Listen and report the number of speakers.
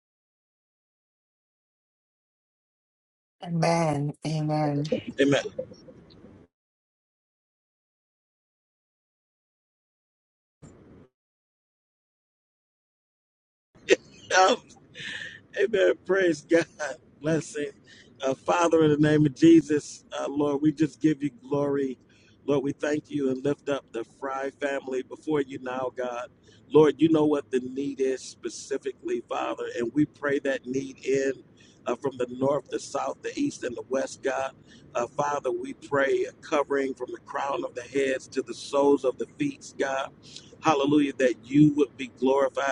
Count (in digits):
2